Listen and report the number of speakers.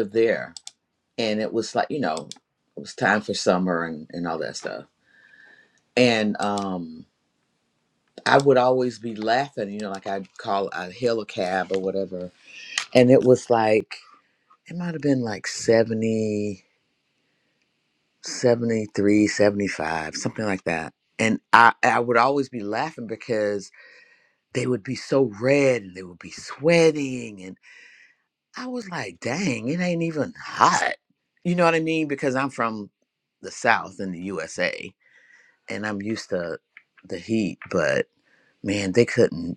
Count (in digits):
1